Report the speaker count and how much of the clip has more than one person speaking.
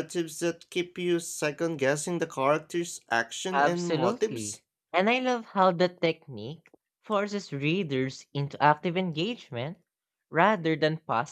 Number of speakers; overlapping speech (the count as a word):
two, about 8%